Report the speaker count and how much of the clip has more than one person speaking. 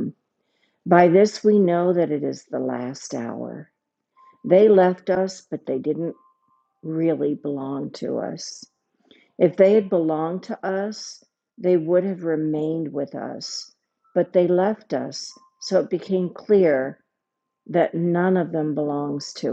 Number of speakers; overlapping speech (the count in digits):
1, no overlap